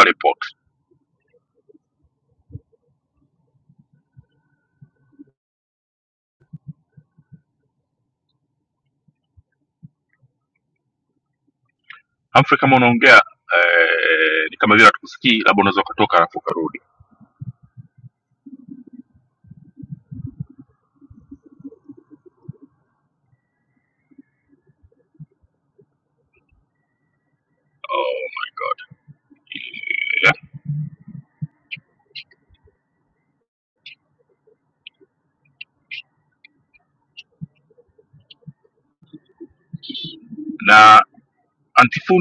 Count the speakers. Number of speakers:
1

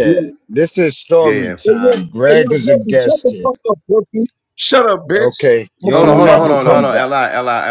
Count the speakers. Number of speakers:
3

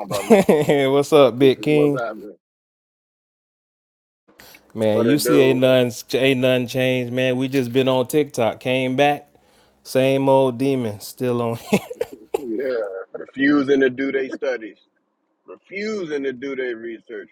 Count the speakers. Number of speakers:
3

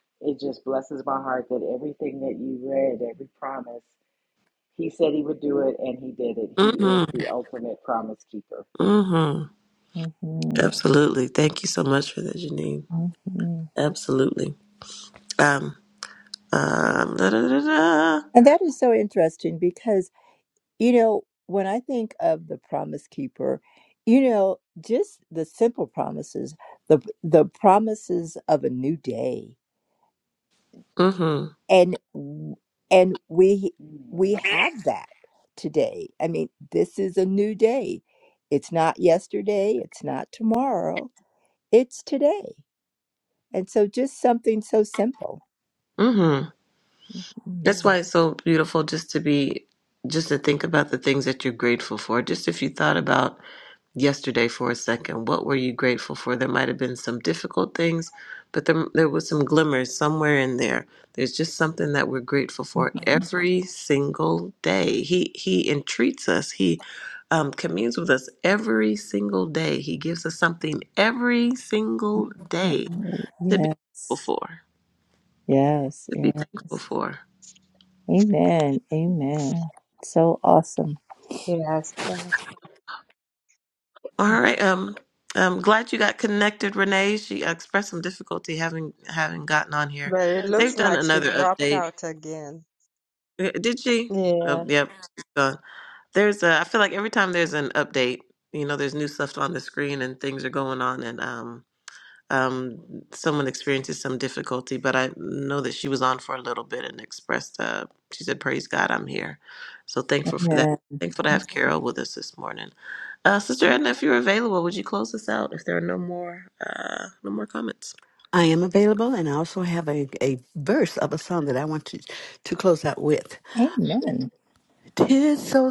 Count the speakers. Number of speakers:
5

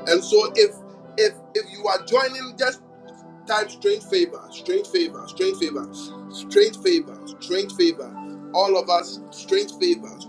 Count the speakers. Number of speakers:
1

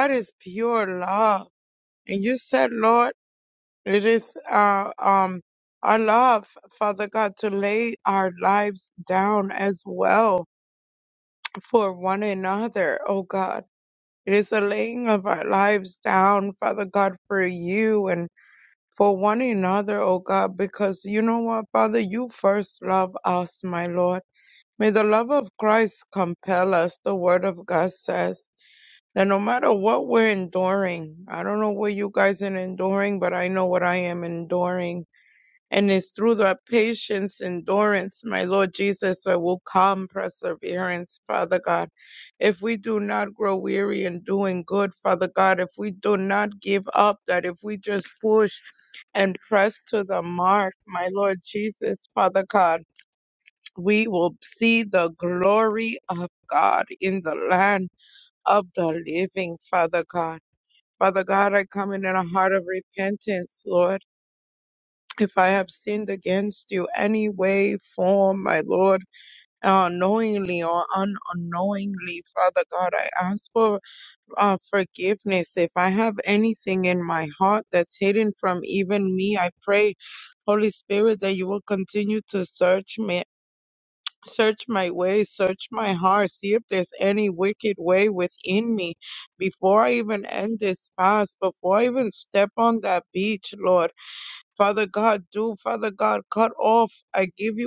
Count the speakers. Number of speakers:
1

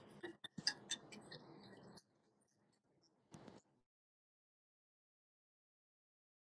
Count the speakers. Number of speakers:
0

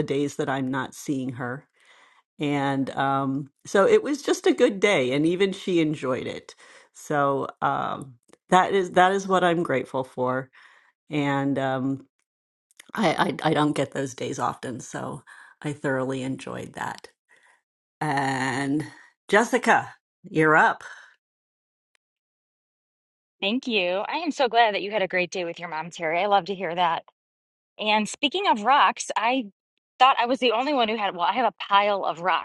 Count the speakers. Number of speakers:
2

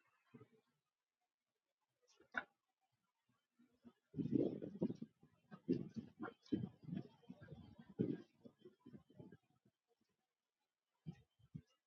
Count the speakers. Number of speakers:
0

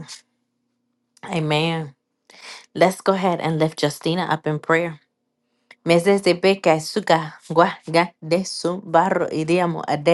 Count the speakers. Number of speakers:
1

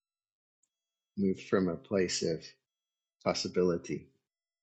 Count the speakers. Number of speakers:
1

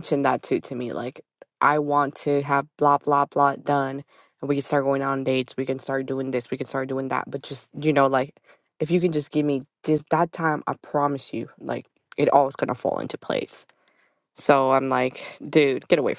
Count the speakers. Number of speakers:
1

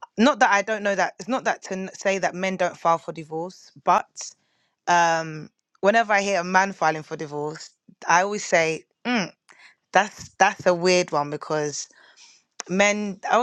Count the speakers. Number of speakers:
1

